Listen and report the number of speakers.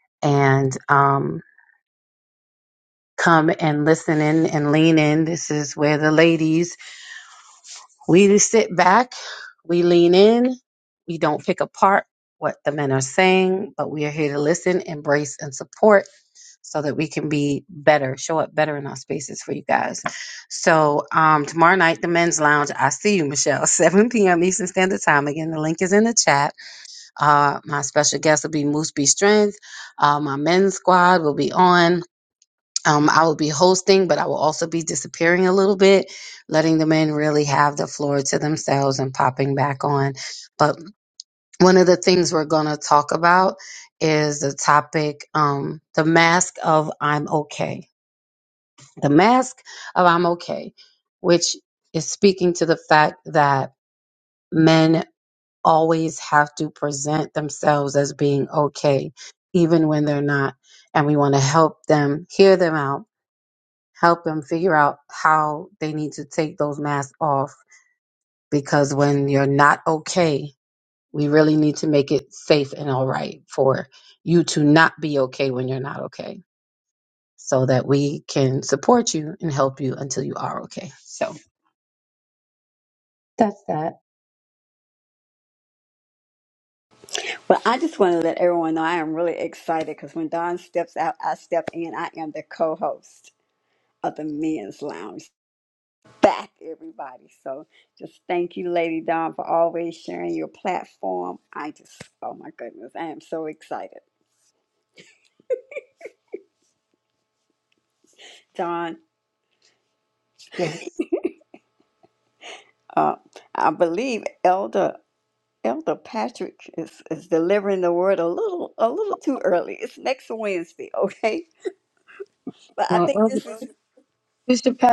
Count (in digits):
2